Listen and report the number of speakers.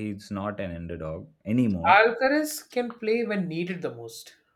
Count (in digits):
2